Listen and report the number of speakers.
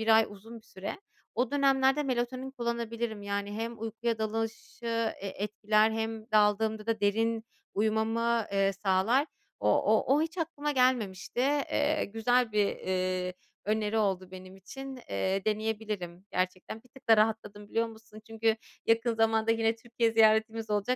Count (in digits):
1